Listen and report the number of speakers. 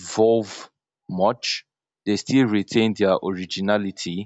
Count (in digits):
1